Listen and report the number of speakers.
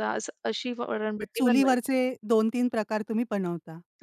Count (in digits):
2